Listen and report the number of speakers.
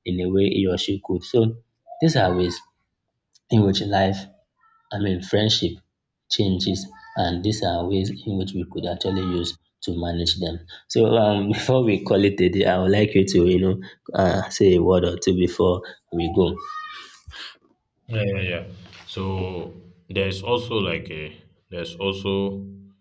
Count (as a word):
two